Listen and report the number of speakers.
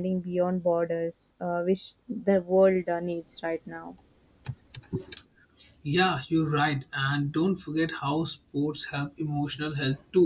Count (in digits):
2